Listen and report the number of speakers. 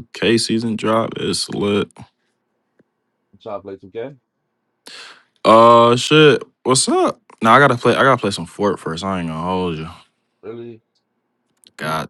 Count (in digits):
2